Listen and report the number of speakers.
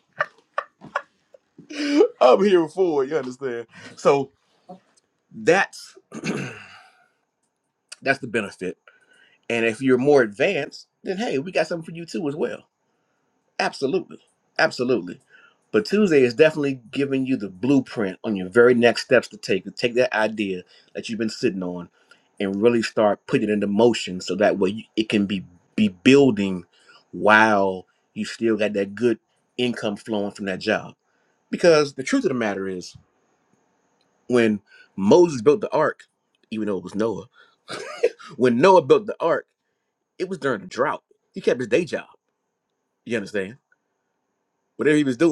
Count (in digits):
1